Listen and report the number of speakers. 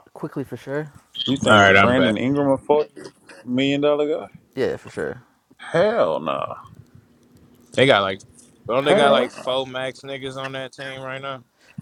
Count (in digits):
3